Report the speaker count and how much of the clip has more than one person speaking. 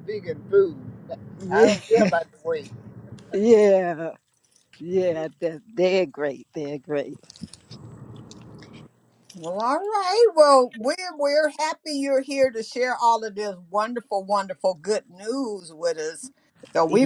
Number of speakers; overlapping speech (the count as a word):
three, about 3%